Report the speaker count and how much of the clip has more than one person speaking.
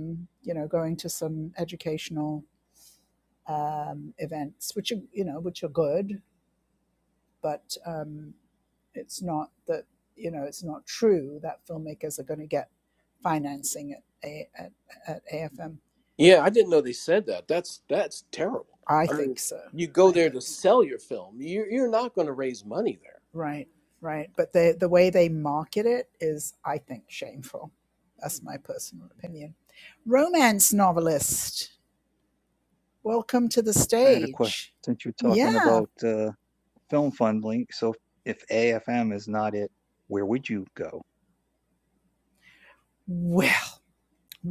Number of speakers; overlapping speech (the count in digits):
3, about 4%